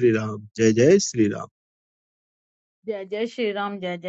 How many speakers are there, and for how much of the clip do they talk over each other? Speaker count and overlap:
two, no overlap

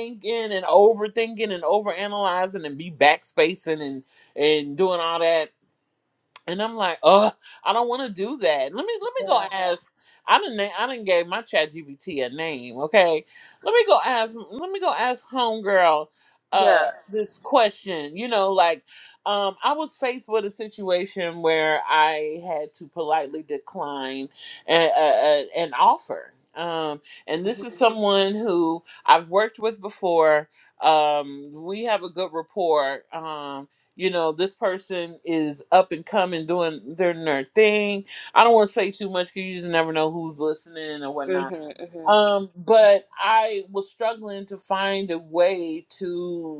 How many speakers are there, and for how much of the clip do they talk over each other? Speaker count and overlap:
two, about 2%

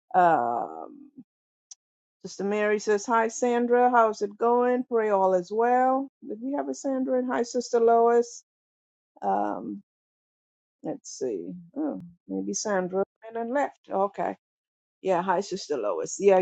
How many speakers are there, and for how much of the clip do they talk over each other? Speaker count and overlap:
one, no overlap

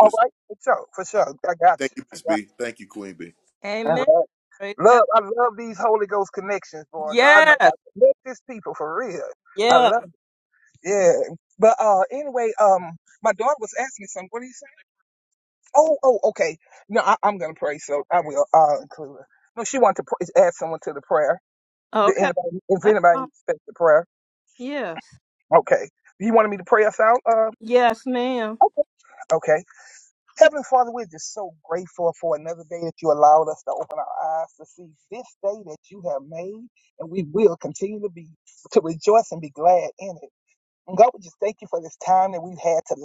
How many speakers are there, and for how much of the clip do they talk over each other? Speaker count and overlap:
three, about 6%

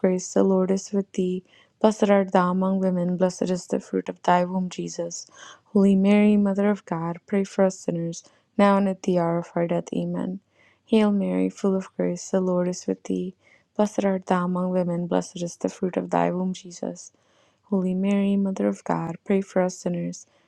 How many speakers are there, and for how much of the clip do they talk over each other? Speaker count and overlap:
one, no overlap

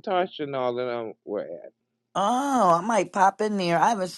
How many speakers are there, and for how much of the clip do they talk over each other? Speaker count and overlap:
two, no overlap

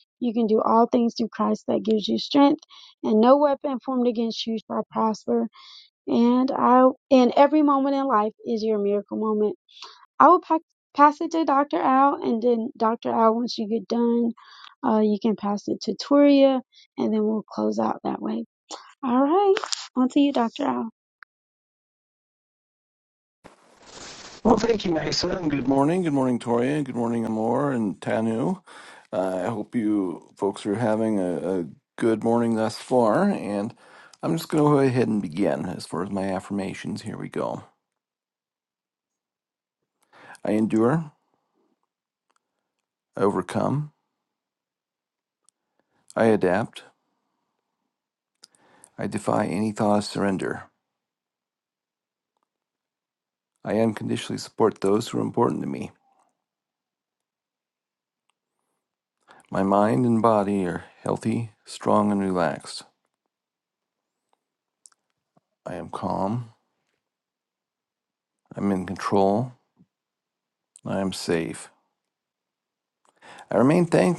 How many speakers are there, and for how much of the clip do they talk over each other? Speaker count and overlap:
two, no overlap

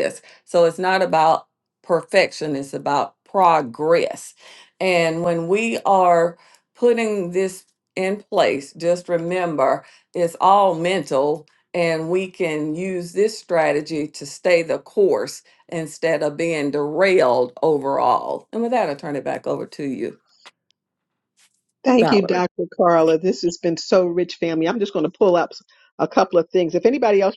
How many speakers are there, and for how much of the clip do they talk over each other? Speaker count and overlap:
two, about 1%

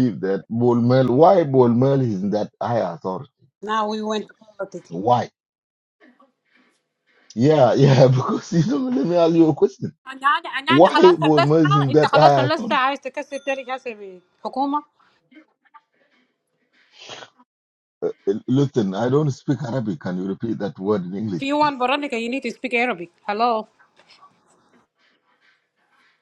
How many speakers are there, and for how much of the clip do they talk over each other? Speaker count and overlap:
two, about 6%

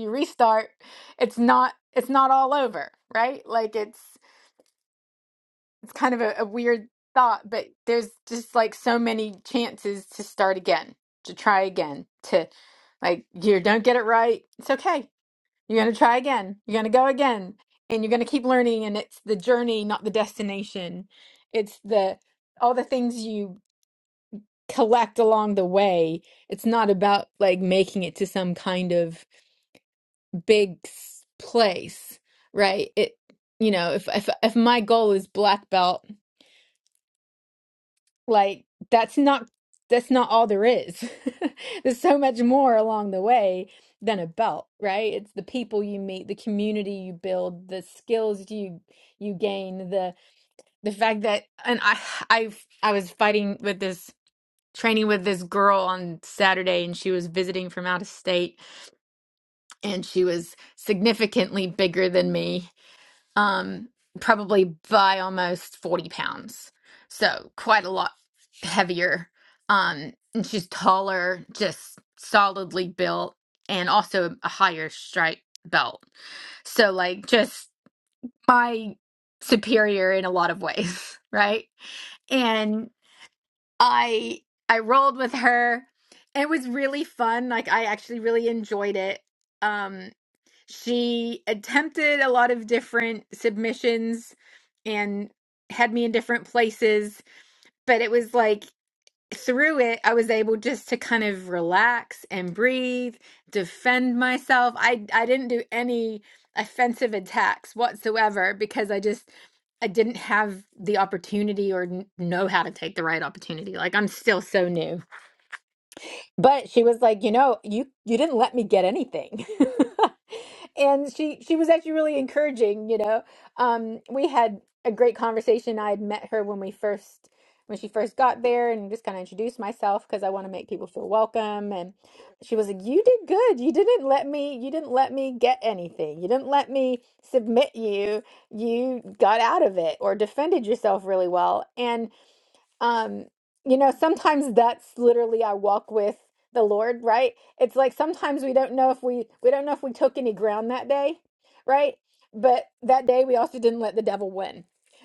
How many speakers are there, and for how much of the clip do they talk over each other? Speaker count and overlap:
one, no overlap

